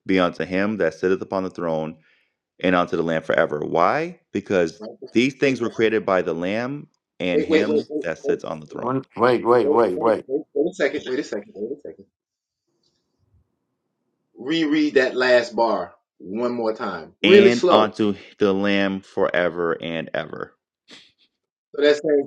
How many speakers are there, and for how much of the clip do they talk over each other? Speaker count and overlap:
three, about 12%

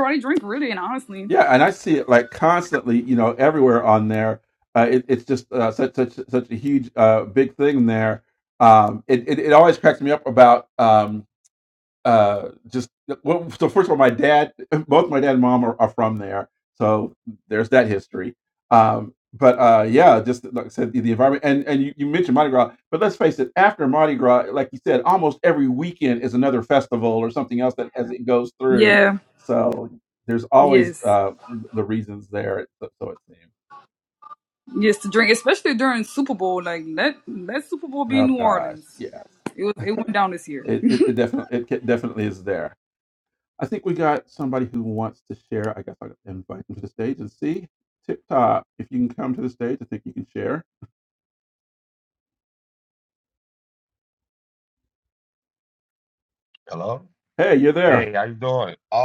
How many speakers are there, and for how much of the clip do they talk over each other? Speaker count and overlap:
three, about 3%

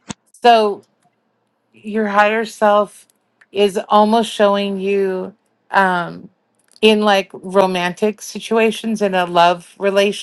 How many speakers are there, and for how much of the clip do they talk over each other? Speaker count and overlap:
one, no overlap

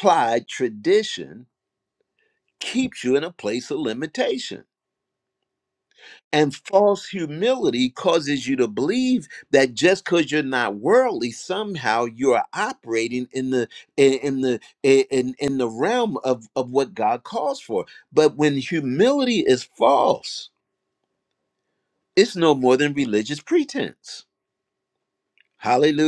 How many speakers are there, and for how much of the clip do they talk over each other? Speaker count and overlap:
one, no overlap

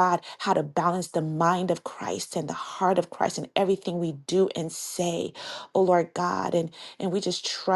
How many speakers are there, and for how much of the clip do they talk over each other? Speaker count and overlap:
one, no overlap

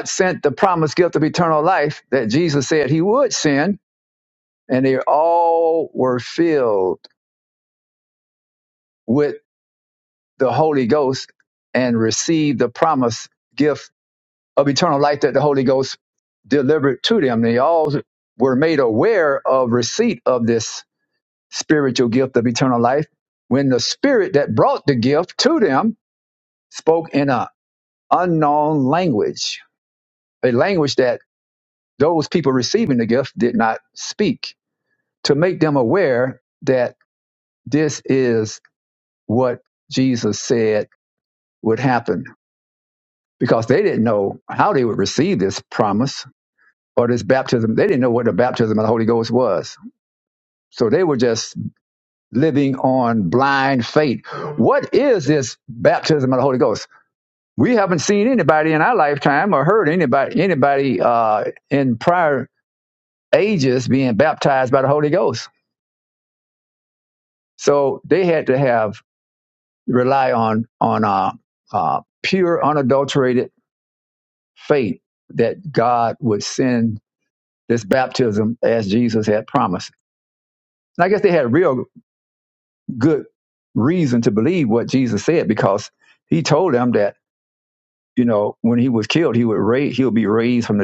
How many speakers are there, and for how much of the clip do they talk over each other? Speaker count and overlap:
one, no overlap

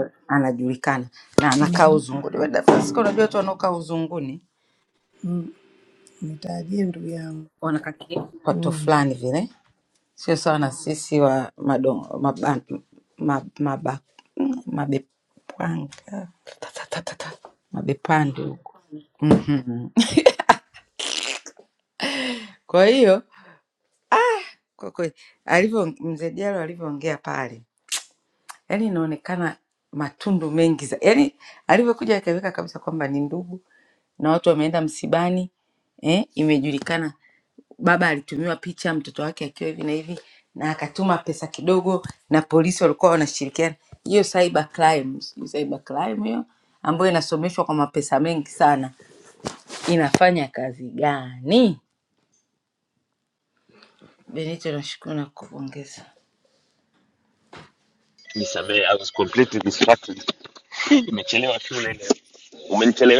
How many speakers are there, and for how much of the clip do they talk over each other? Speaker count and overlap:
three, about 1%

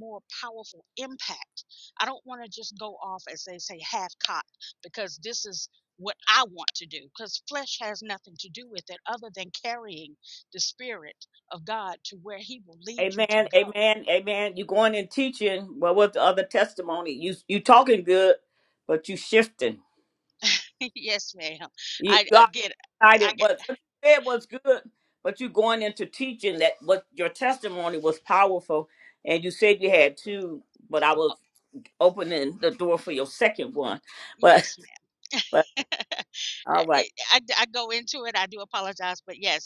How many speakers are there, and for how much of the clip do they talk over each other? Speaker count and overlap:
two, about 5%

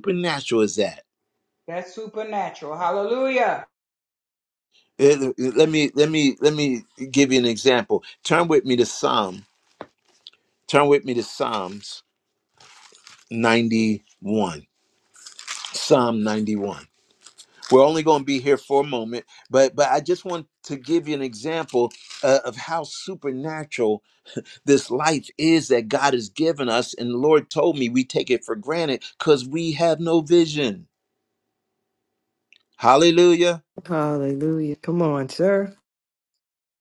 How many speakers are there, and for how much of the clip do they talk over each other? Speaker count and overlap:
three, no overlap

